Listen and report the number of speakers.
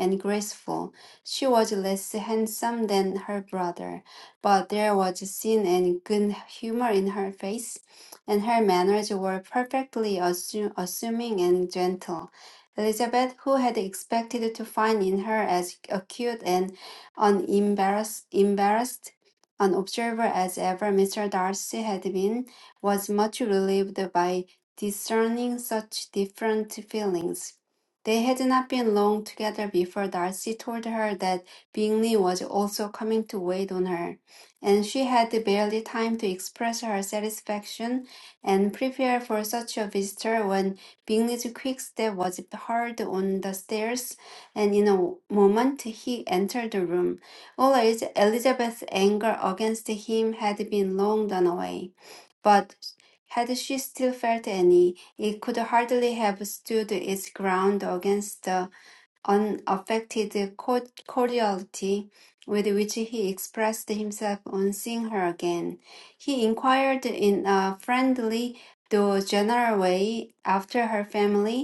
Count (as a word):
one